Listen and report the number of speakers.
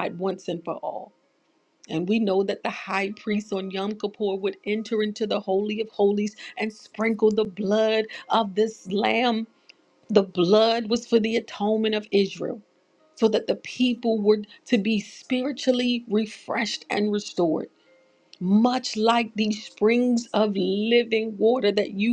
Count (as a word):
one